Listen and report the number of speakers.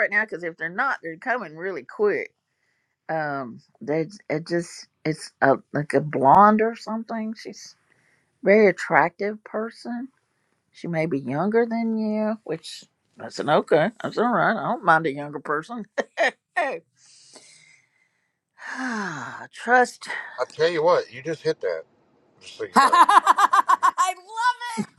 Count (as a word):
three